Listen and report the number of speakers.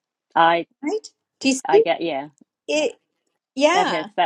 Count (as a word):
two